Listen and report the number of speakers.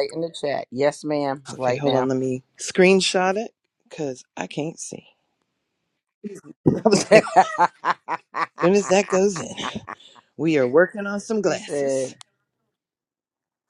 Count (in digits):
2